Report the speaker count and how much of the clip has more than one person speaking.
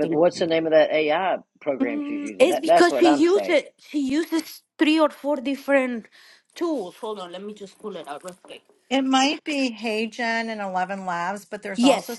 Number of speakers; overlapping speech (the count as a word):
three, about 20%